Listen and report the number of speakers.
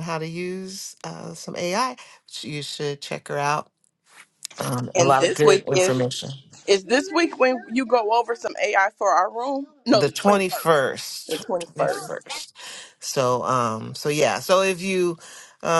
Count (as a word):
two